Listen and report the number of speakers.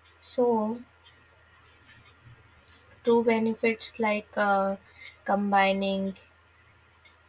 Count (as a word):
one